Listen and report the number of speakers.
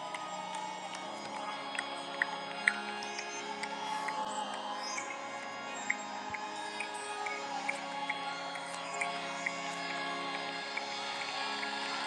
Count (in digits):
0